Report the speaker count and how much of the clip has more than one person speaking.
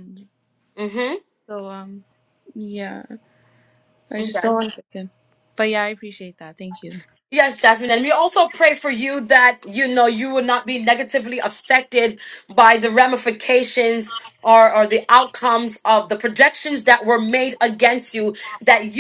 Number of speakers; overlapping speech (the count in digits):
2, no overlap